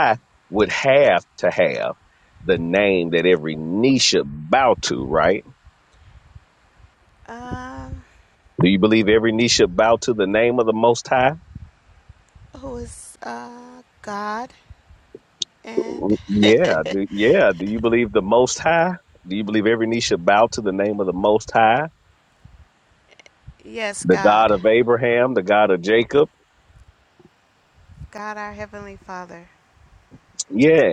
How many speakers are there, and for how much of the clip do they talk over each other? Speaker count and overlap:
2, about 2%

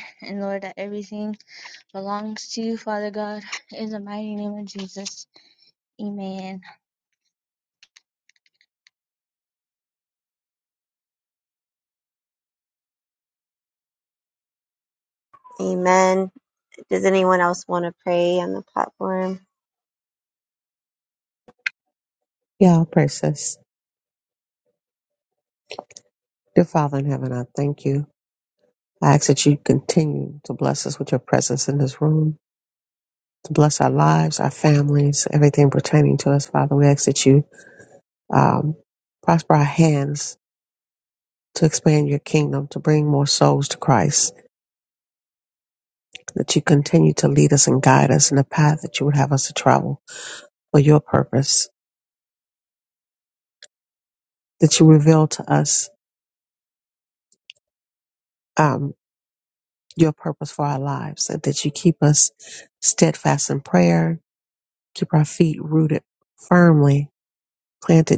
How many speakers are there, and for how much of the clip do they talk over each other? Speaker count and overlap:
3, no overlap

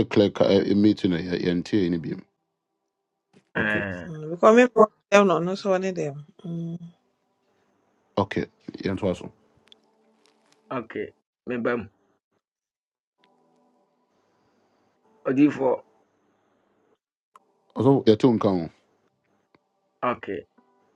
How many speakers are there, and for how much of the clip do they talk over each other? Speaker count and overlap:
3, about 1%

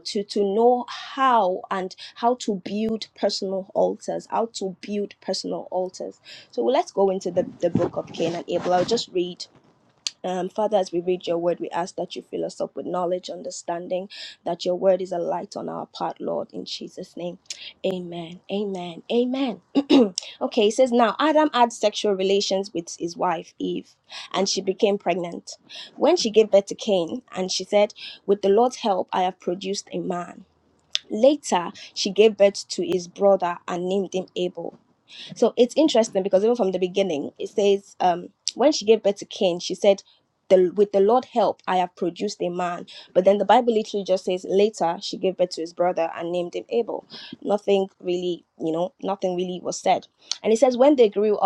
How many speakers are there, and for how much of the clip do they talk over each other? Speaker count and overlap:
1, no overlap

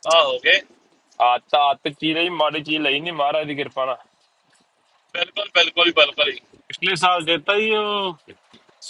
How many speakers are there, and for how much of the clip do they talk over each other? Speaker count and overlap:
3, no overlap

